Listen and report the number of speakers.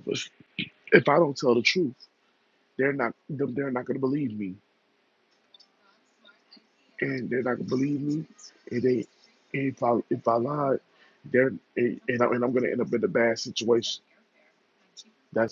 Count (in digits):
1